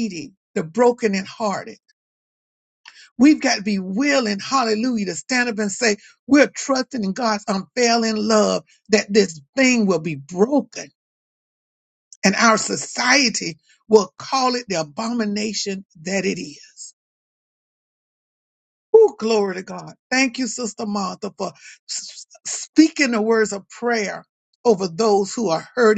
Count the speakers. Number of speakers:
1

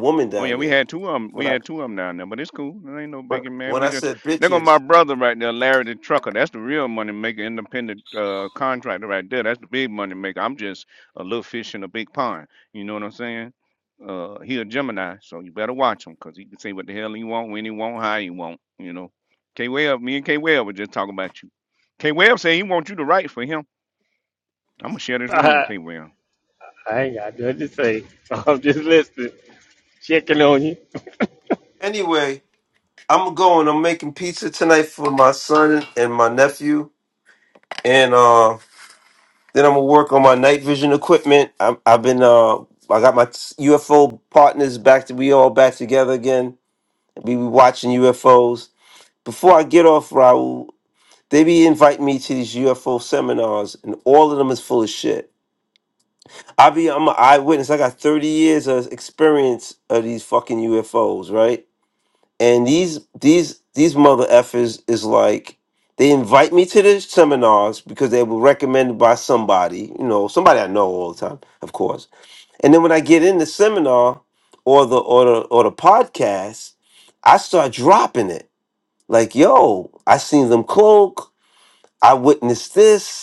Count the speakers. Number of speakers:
3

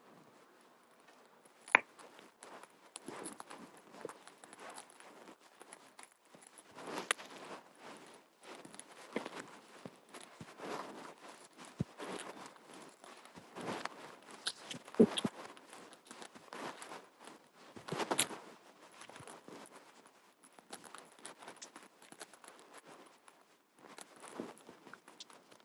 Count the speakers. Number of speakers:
0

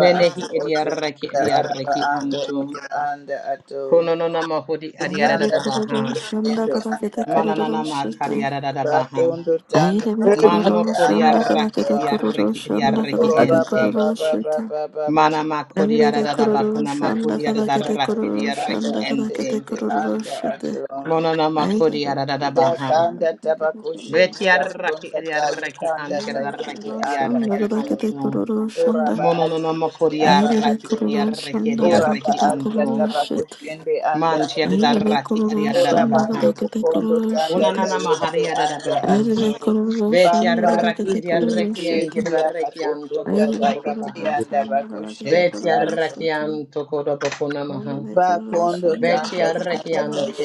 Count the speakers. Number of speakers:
3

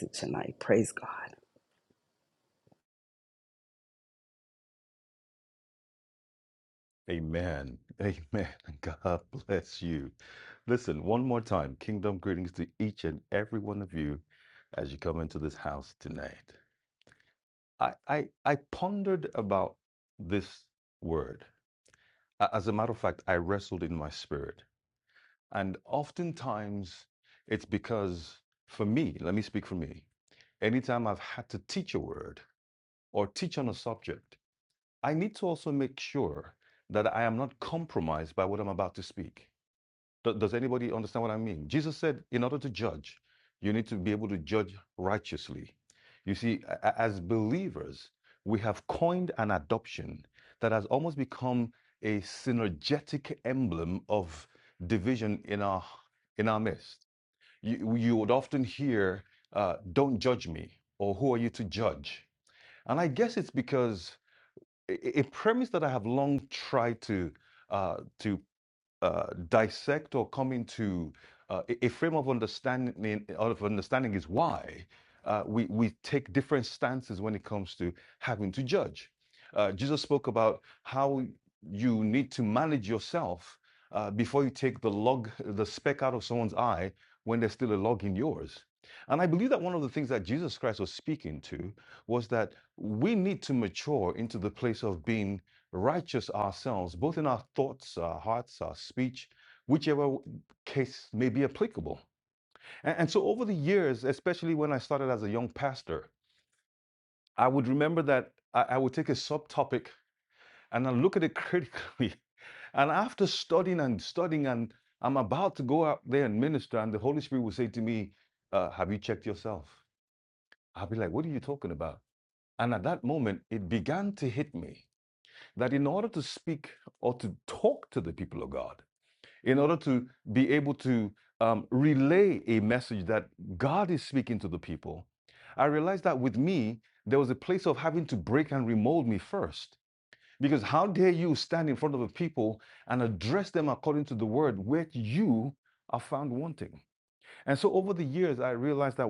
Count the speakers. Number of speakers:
2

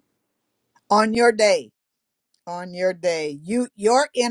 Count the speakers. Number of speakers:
1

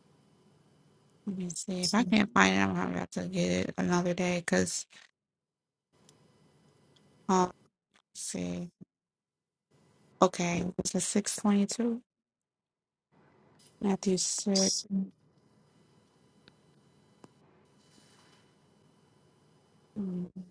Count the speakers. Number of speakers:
1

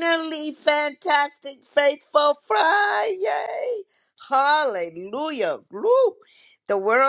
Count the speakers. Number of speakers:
1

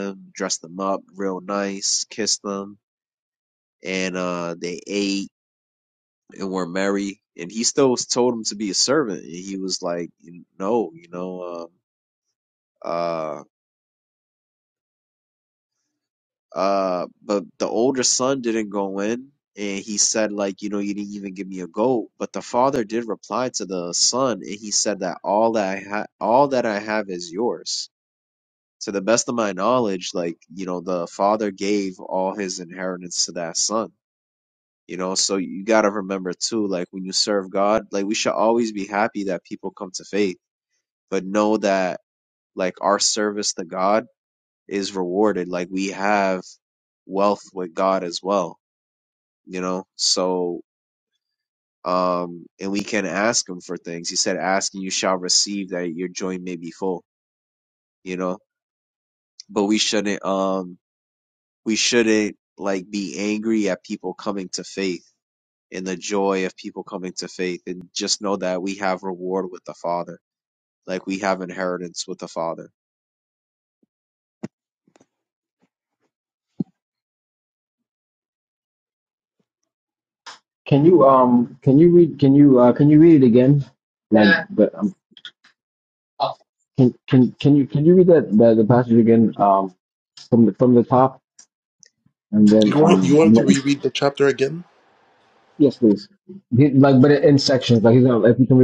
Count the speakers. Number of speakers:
3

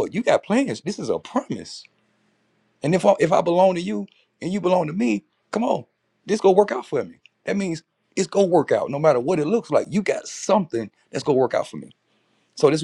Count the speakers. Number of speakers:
1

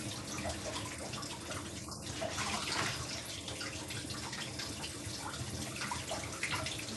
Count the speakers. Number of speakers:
0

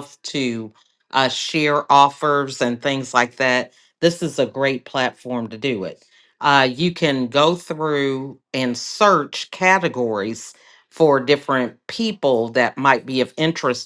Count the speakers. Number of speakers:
1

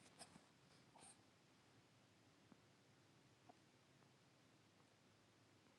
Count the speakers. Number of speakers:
0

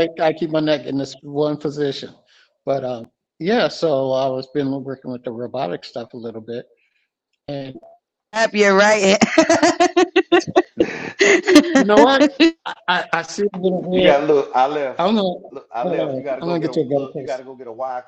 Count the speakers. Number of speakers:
3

